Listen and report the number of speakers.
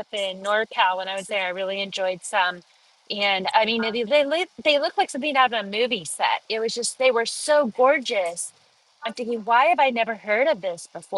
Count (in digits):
1